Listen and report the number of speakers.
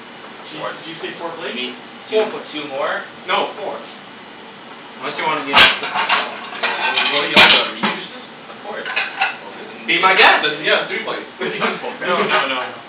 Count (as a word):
four